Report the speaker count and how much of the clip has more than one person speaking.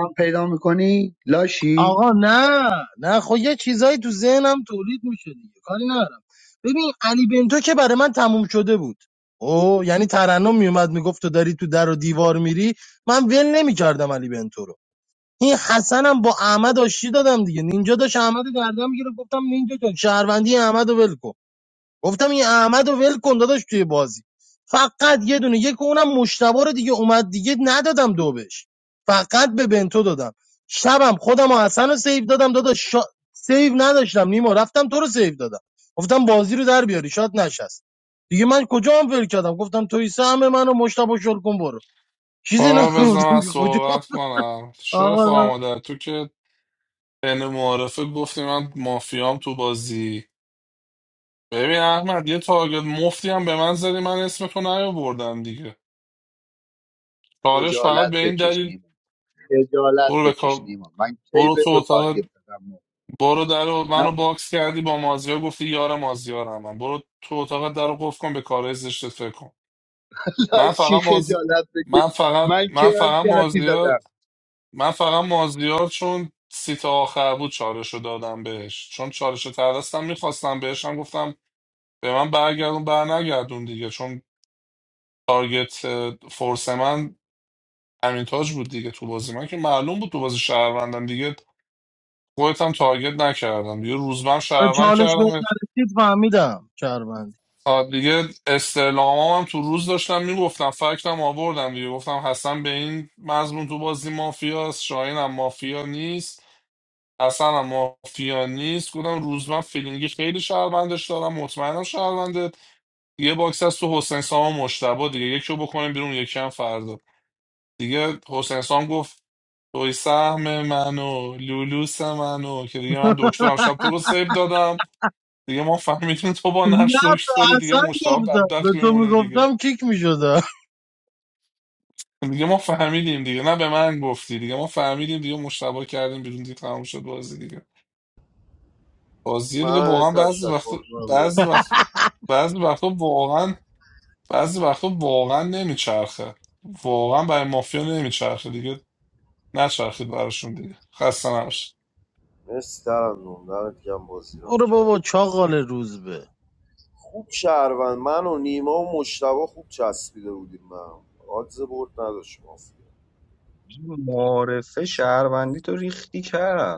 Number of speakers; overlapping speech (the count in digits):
5, about 8%